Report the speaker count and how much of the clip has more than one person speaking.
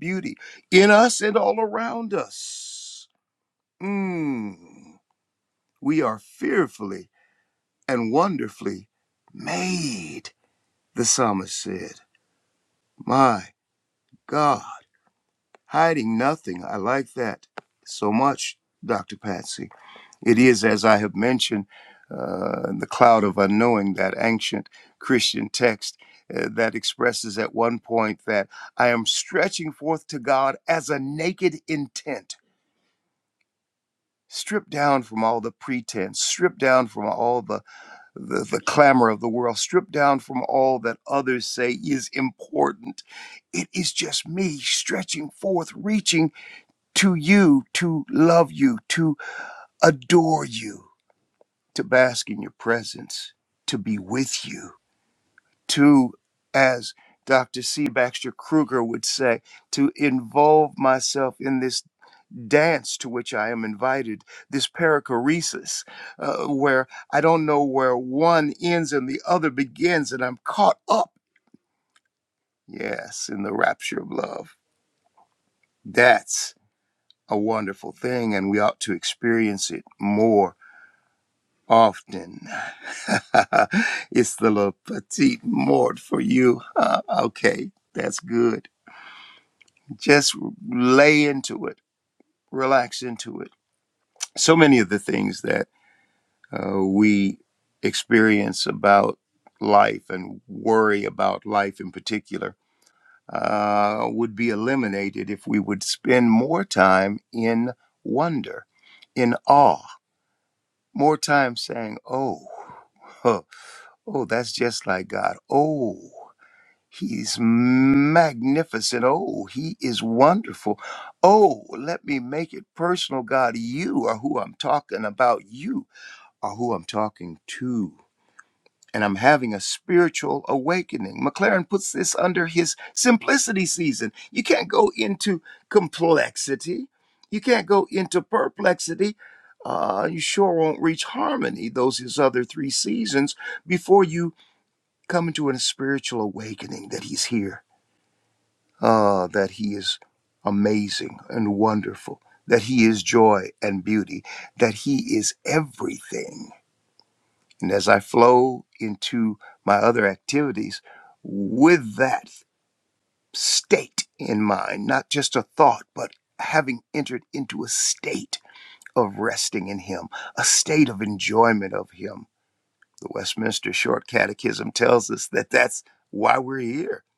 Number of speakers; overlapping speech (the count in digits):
1, no overlap